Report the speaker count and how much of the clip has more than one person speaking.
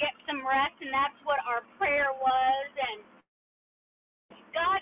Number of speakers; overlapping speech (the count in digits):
1, no overlap